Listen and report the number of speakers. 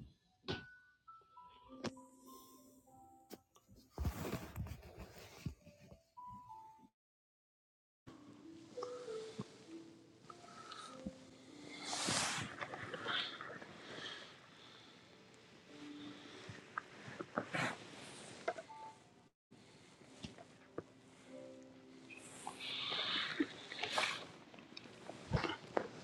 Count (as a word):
zero